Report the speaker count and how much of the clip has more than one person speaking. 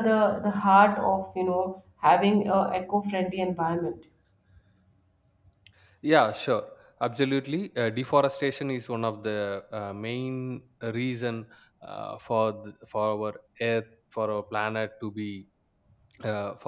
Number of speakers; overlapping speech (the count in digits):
2, no overlap